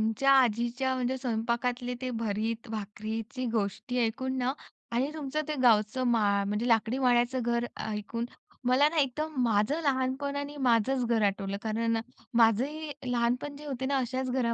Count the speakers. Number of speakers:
one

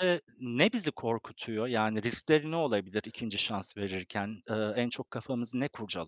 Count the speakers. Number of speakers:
one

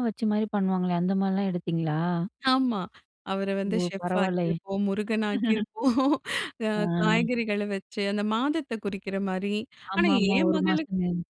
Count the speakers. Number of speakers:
two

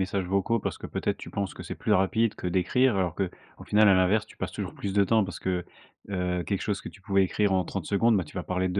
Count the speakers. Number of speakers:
one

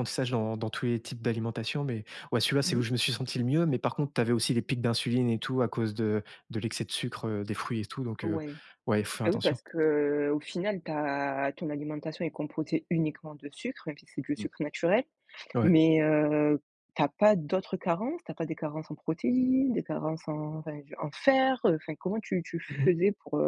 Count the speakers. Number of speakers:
two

